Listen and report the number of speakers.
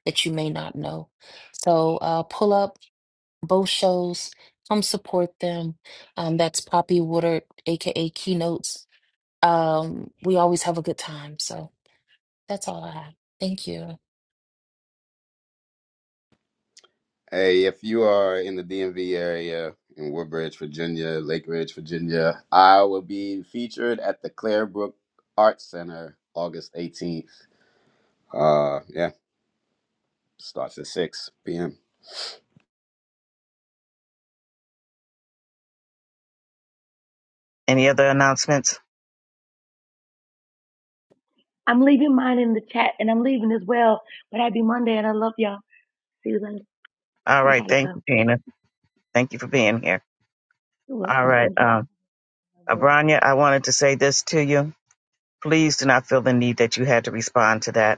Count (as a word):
four